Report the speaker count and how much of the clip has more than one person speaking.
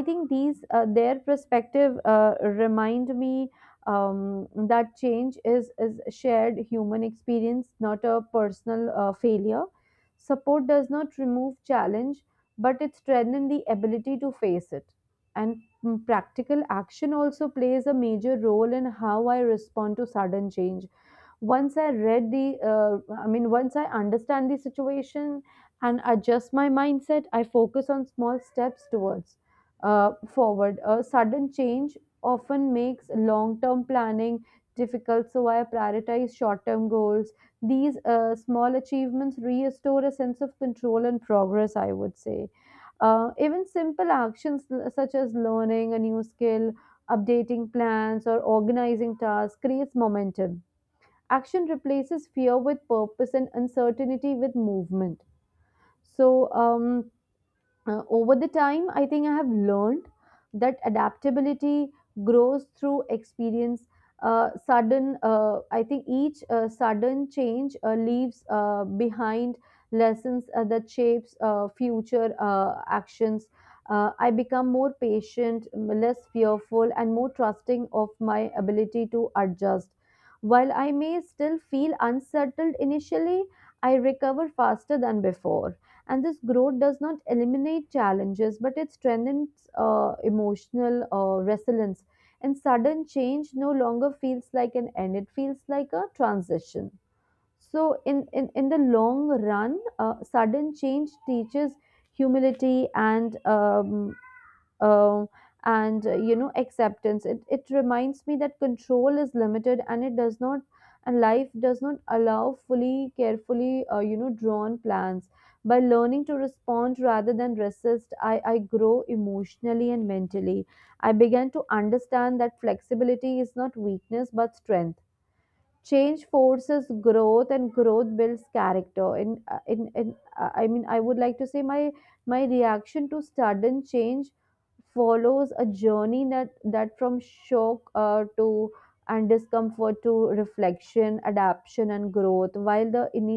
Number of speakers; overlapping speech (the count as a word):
one, no overlap